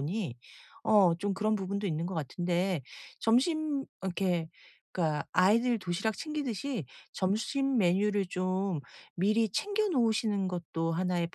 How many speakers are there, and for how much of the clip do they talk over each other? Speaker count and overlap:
1, no overlap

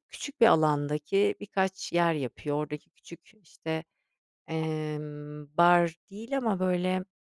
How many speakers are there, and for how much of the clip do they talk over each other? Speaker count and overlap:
1, no overlap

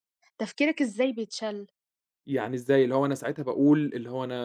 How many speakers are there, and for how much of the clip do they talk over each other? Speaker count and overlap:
2, no overlap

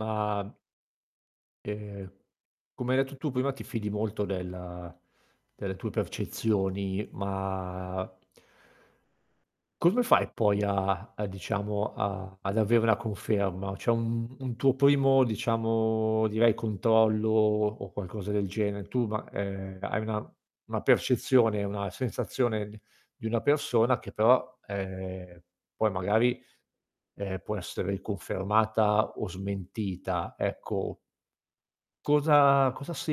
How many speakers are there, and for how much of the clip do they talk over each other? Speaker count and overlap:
1, no overlap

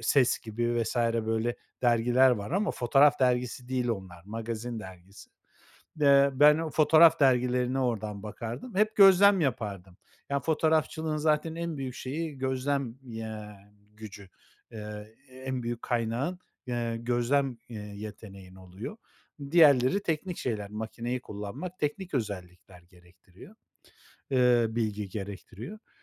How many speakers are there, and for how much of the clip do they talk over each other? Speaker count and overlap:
1, no overlap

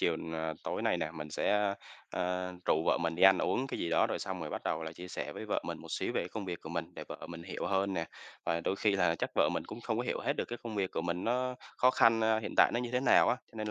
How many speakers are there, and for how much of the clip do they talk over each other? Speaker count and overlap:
1, no overlap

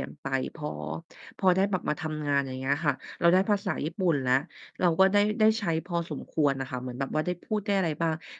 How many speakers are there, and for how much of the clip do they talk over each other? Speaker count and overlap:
1, no overlap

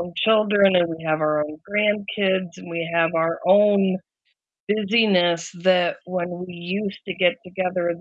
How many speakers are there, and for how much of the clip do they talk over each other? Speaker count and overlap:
1, no overlap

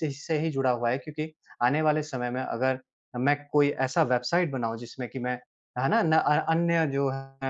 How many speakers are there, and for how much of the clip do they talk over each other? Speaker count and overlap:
1, no overlap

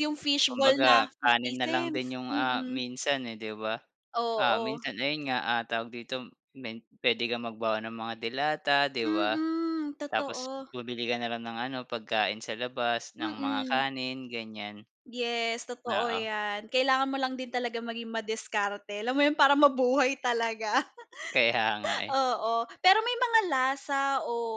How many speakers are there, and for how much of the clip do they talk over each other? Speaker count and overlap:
2, about 19%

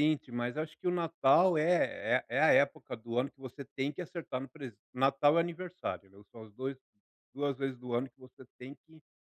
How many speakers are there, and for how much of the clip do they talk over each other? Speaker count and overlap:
1, no overlap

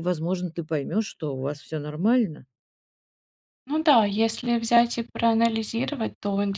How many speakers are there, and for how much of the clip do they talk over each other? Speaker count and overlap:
2, no overlap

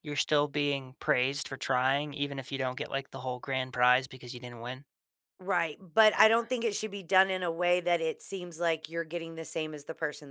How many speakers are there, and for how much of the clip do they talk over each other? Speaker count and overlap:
2, no overlap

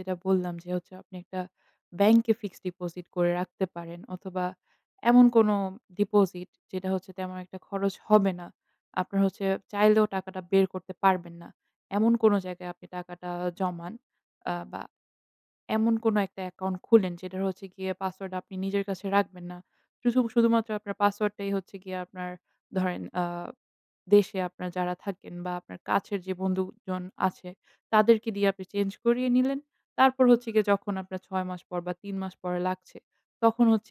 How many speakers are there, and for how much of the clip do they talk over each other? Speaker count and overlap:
1, no overlap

